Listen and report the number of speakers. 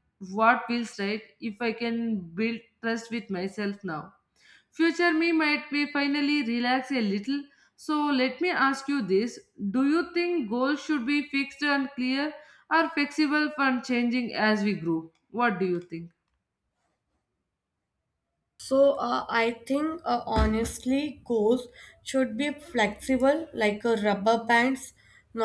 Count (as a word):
two